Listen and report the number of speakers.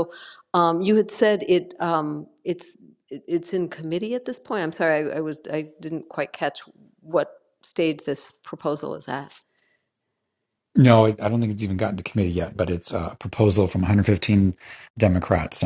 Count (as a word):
two